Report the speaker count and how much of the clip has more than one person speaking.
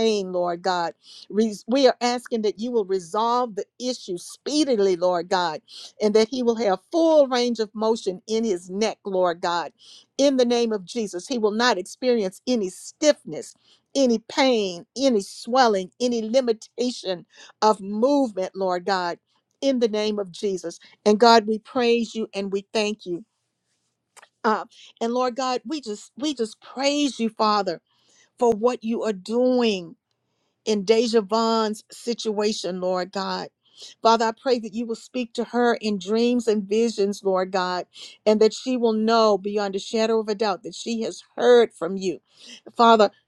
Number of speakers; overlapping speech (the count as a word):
one, no overlap